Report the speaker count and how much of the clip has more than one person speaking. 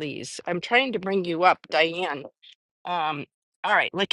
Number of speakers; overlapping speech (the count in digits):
1, no overlap